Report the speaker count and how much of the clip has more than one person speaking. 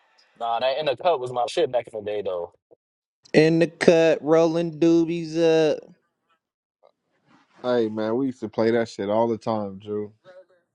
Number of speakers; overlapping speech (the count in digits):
3, no overlap